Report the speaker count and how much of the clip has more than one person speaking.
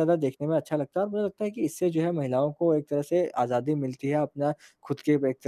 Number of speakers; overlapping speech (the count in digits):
1, no overlap